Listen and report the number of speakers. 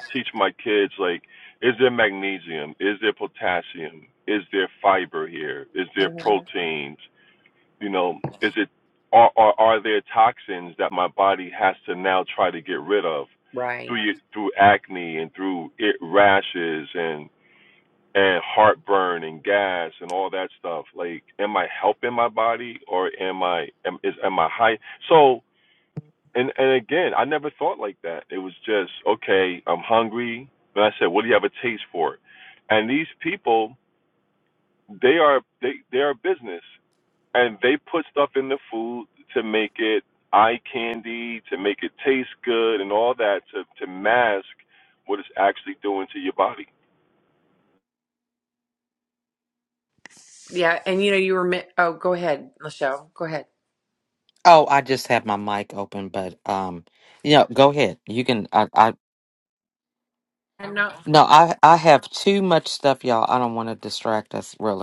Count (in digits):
3